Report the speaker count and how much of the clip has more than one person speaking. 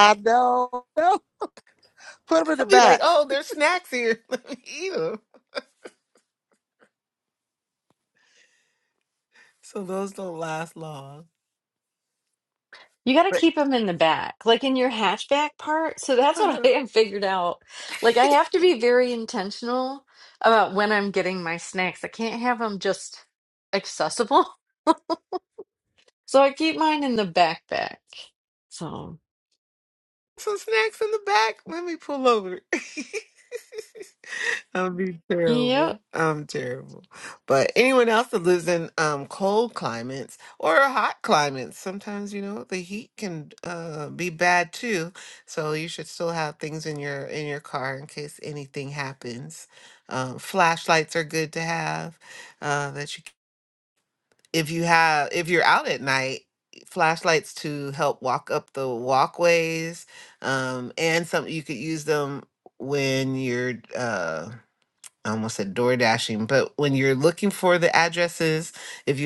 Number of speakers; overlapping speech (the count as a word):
three, about 2%